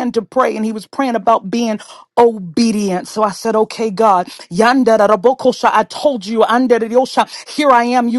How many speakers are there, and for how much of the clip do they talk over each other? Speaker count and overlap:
1, no overlap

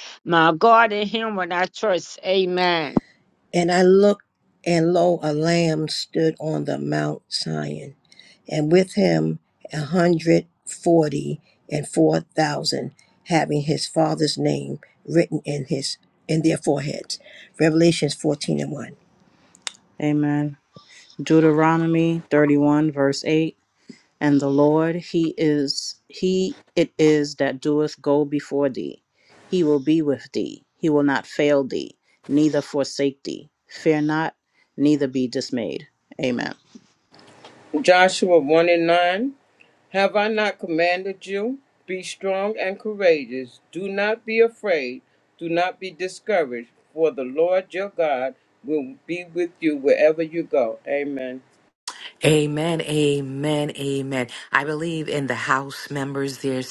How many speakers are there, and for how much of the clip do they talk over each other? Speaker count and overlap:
5, no overlap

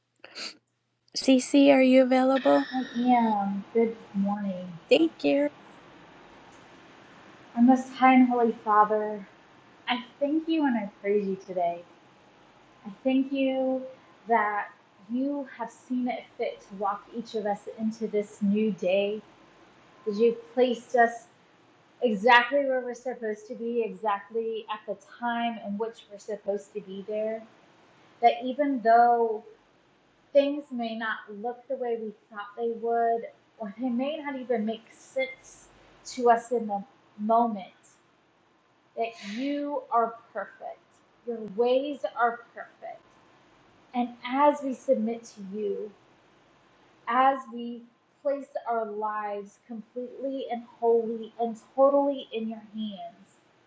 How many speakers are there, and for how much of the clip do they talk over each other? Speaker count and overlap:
2, no overlap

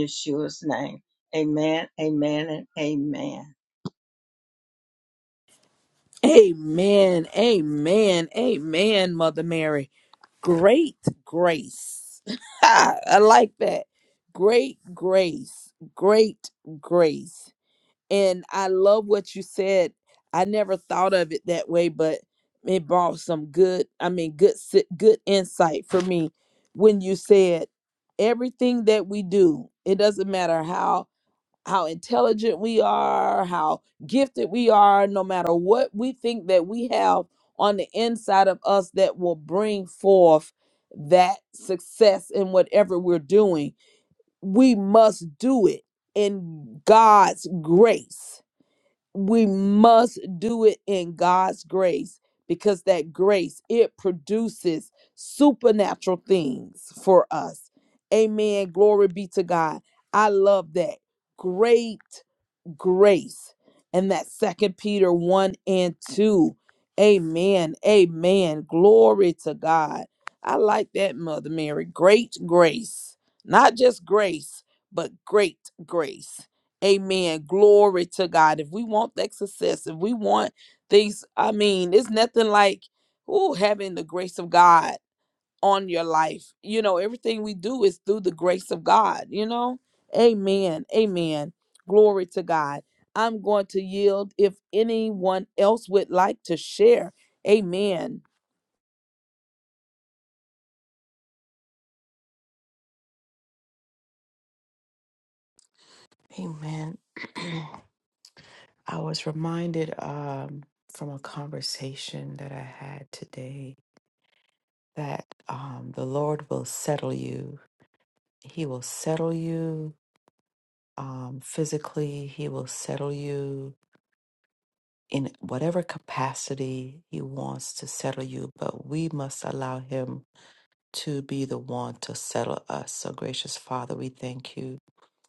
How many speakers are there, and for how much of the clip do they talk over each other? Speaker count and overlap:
3, no overlap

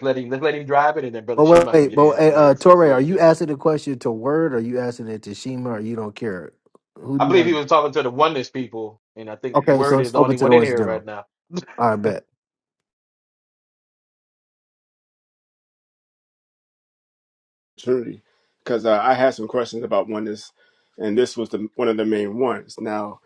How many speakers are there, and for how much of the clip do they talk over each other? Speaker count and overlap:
3, about 17%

